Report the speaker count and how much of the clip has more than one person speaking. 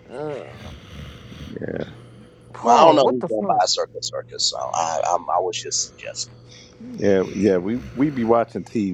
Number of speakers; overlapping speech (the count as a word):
three, about 11%